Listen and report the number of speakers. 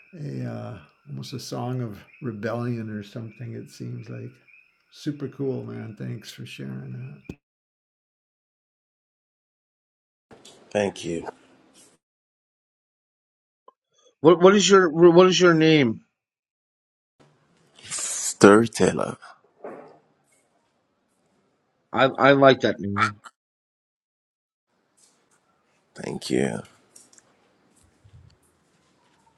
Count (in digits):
3